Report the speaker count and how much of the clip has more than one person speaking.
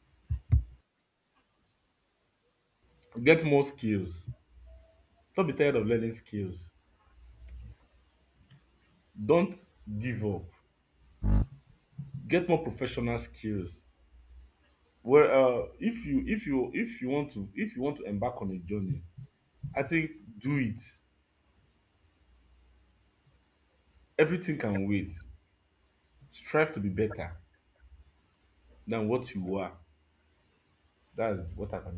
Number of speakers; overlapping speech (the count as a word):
one, no overlap